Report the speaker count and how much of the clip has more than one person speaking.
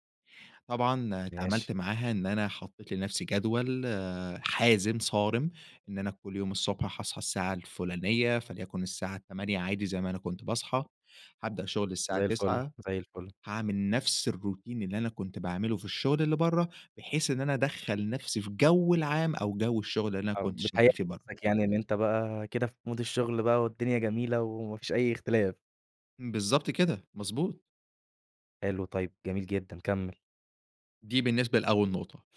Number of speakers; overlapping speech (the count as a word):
two, about 5%